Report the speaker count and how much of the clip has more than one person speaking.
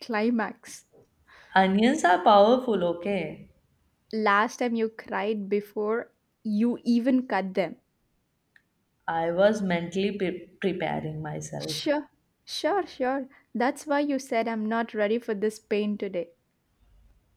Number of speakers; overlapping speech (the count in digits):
2, about 1%